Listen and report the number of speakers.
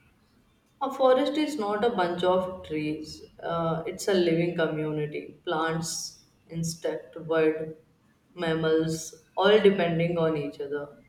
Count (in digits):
1